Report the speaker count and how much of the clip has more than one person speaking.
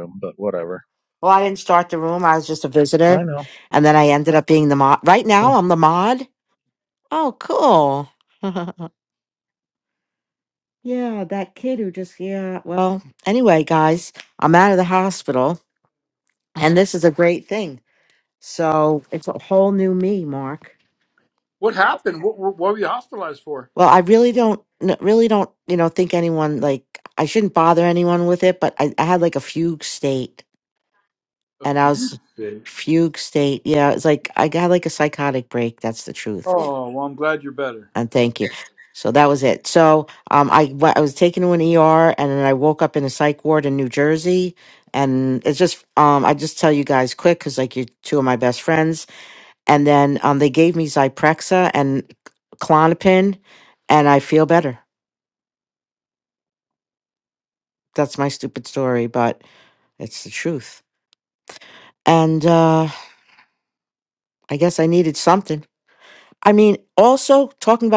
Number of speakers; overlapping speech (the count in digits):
3, about 1%